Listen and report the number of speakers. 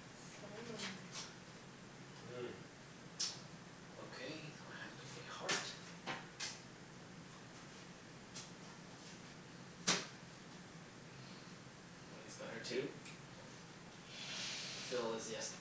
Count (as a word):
two